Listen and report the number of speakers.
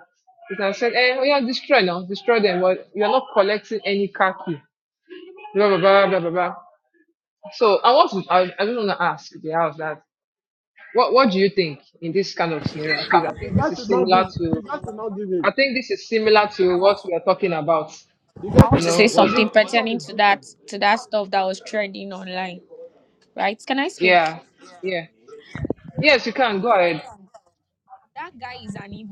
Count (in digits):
3